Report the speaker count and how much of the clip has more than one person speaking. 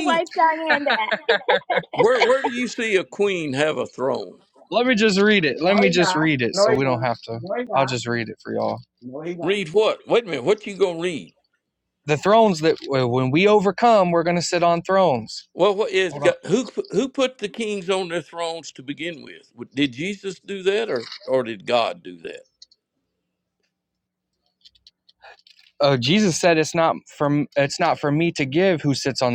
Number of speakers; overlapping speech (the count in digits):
4, about 8%